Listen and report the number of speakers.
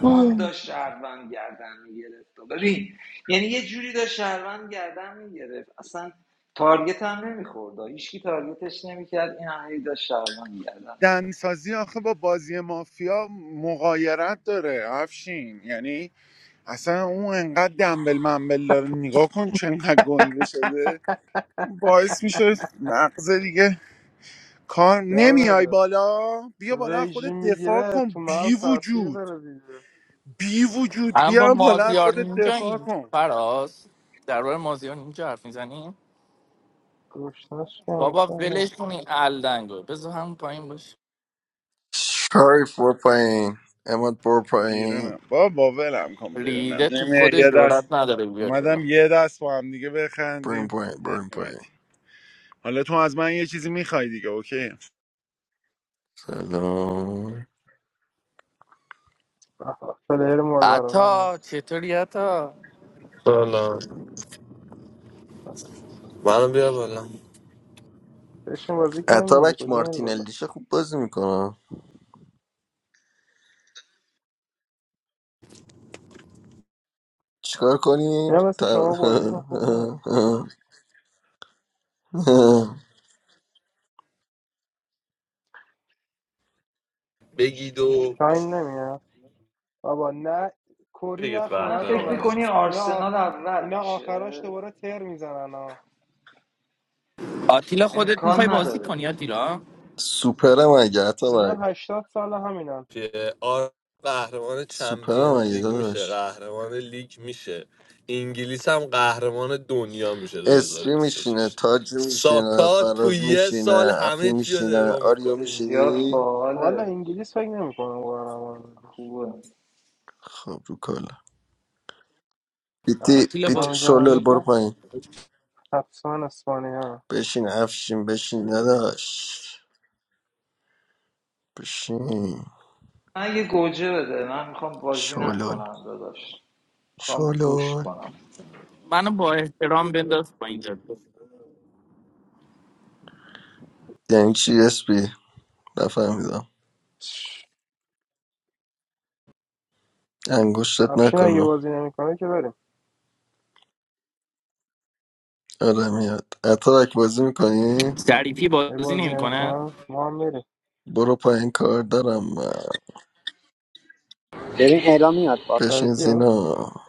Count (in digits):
7